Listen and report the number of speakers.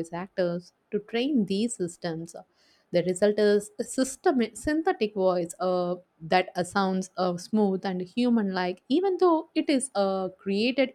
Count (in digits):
1